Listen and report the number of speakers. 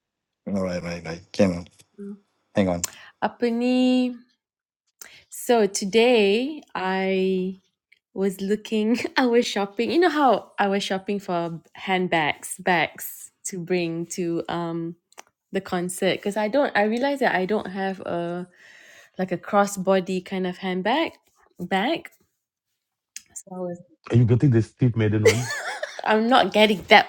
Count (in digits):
3